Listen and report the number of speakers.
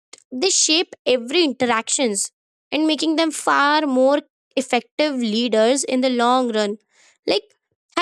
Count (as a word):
one